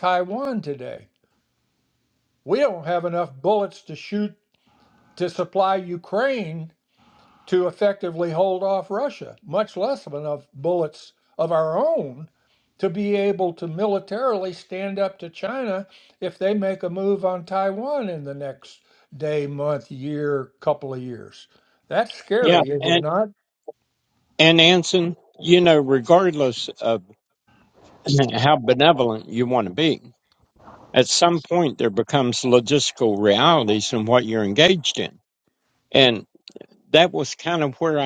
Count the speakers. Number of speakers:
two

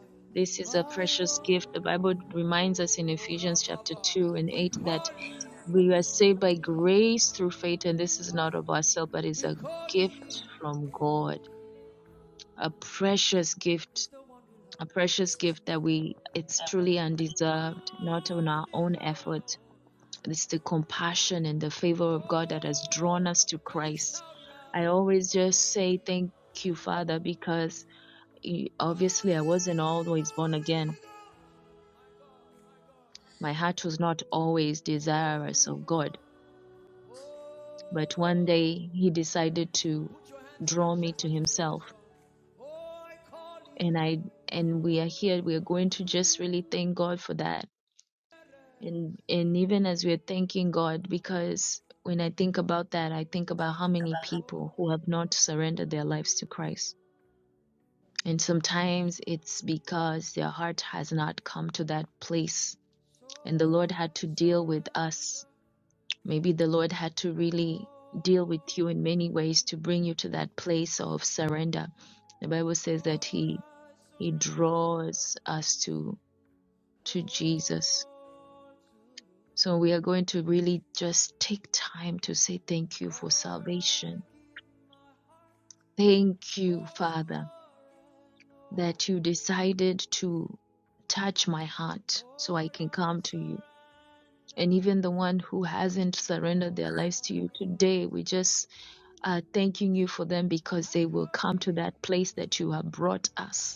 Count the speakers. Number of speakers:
two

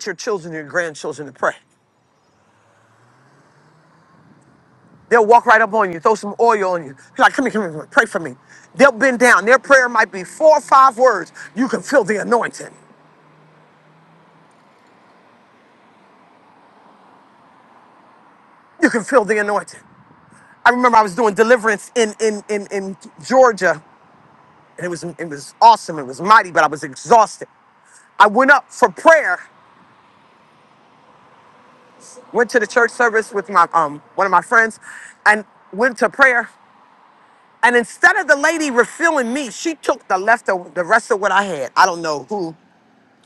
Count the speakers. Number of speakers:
one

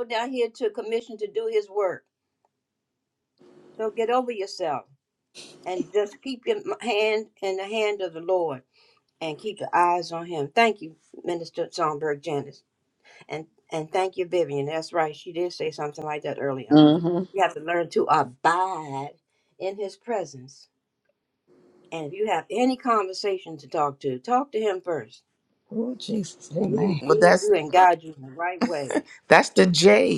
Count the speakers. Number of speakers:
three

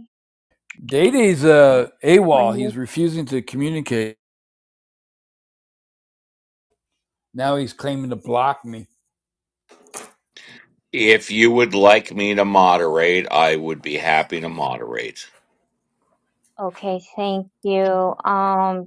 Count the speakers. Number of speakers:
three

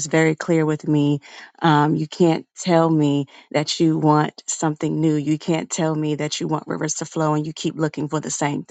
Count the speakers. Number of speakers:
one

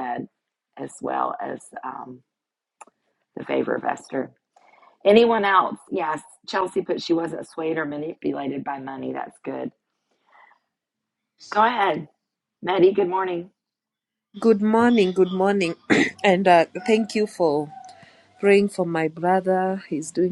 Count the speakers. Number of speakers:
two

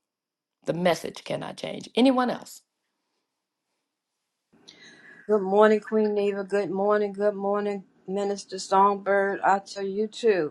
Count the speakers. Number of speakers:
two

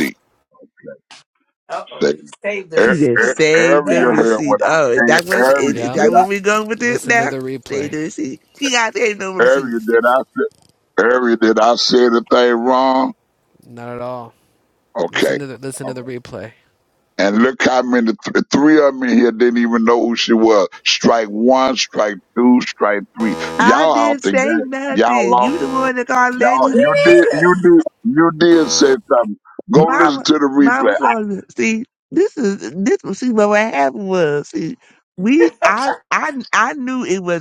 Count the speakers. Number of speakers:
four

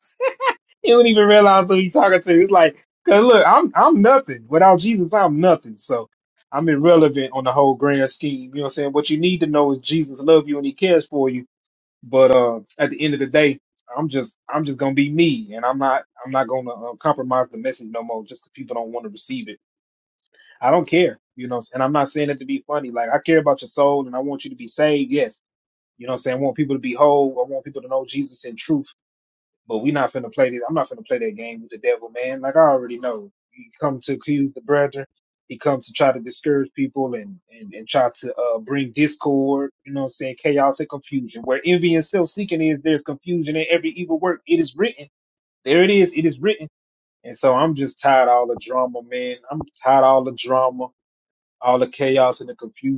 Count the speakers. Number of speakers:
one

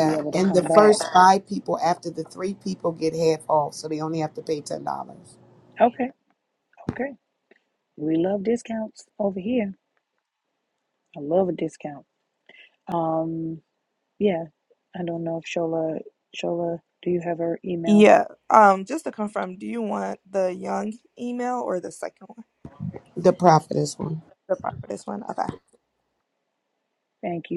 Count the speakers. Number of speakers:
three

